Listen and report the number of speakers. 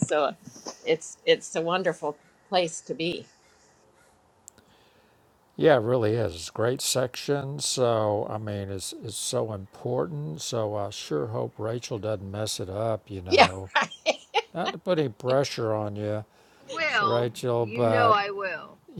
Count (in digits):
3